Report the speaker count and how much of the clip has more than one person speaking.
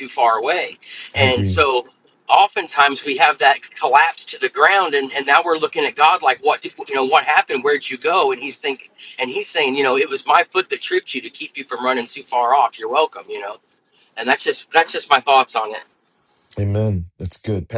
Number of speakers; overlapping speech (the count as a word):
two, about 2%